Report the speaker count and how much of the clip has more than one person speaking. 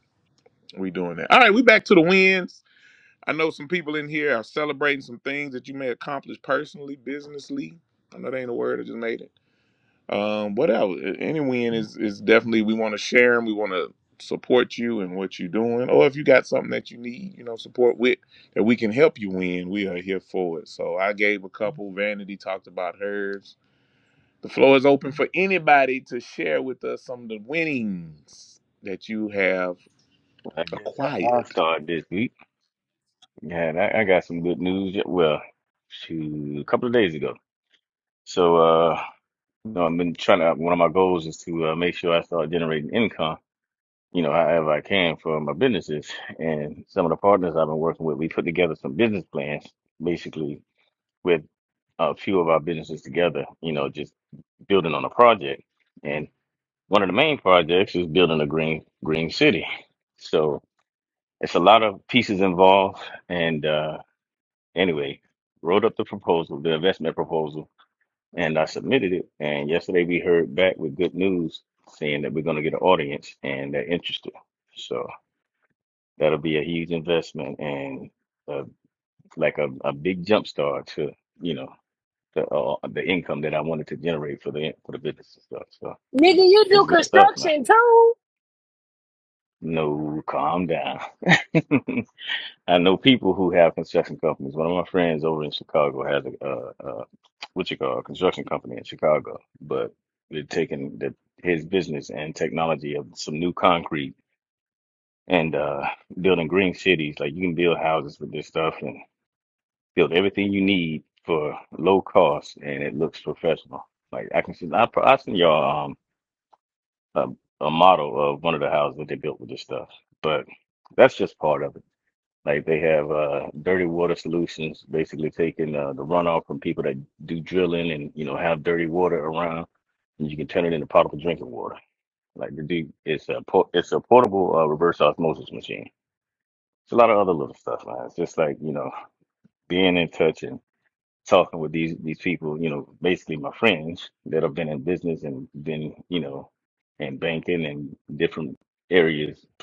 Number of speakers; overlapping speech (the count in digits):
3, about 1%